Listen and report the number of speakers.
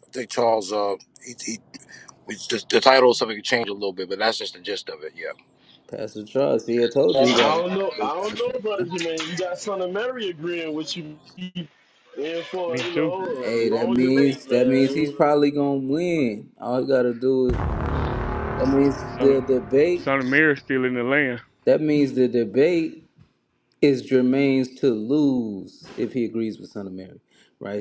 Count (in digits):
4